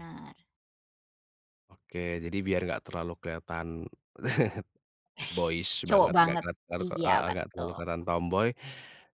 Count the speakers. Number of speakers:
2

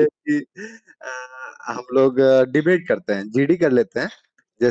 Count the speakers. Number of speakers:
1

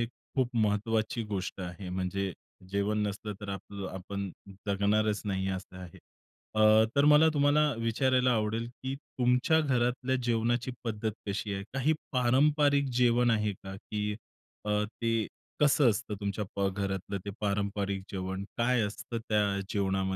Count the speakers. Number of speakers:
1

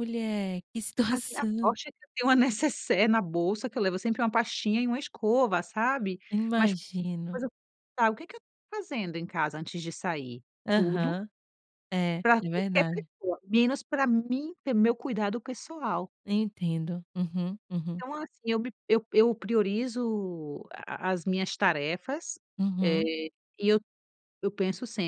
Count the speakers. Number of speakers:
2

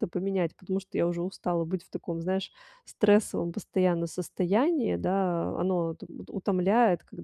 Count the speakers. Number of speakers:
1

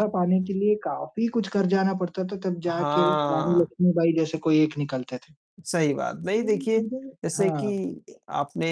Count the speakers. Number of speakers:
2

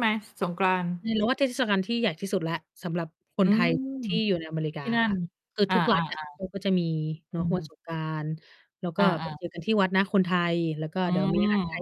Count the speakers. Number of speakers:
2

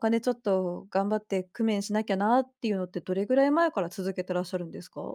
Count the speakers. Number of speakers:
1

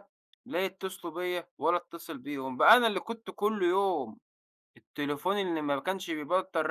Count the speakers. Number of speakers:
1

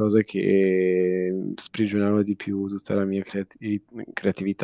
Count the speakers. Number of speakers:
1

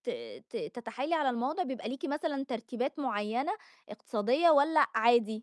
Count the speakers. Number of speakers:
1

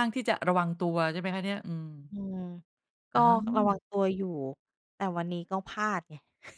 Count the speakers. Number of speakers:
2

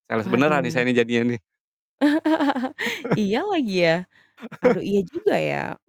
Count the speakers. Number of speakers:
2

